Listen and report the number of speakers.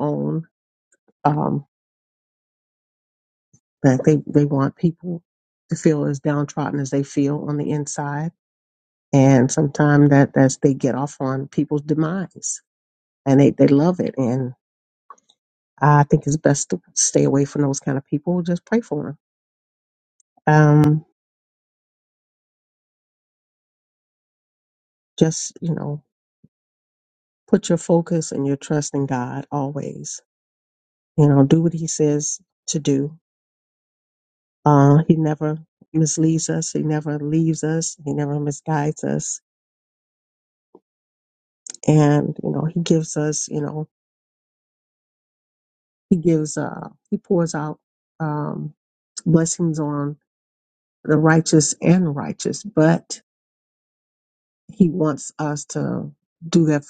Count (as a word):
one